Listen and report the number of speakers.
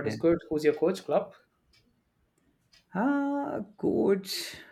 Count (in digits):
2